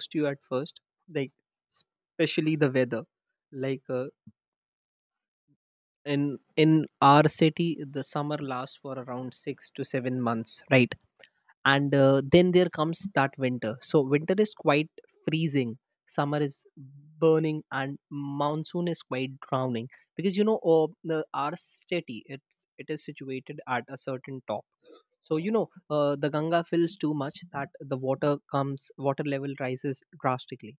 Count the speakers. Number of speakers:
one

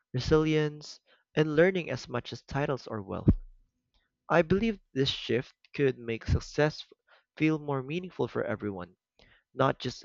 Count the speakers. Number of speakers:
one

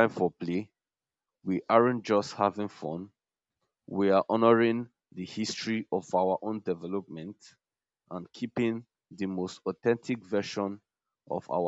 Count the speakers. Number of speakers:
one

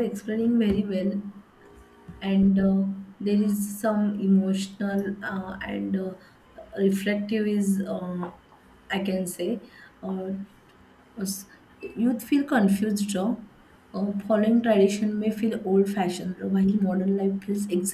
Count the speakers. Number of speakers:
one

